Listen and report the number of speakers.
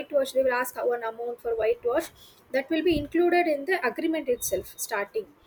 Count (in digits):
1